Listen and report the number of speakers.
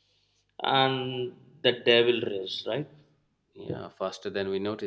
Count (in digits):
2